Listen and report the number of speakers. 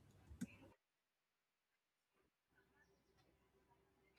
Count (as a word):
zero